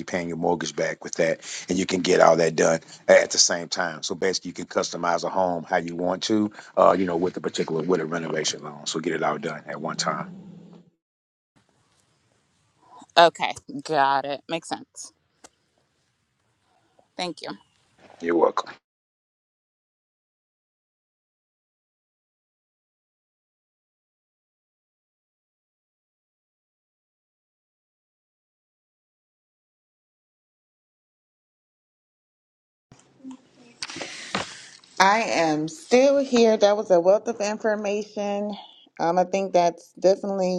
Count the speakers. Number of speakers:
3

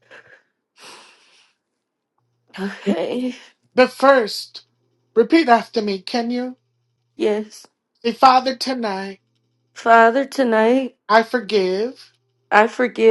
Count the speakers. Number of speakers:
2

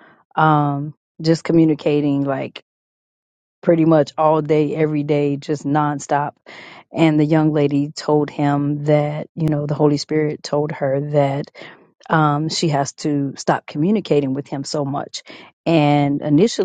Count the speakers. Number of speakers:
1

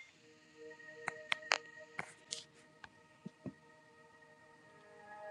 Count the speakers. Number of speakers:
0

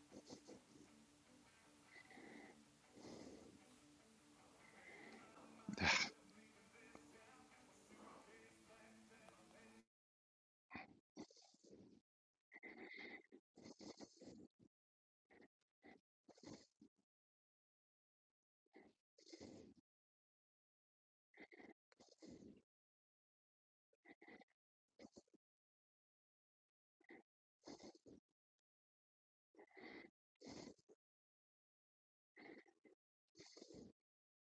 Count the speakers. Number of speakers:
0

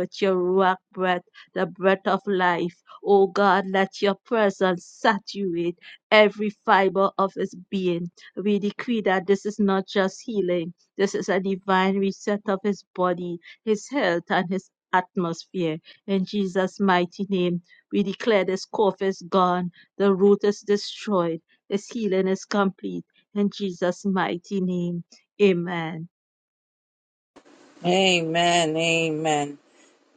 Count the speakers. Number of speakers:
2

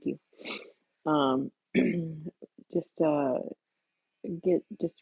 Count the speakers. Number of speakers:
1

